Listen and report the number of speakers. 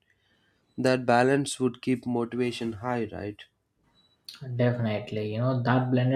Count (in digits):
2